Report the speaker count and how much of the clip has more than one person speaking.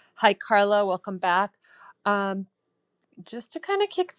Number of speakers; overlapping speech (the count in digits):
1, no overlap